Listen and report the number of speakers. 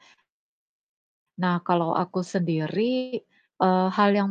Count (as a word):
one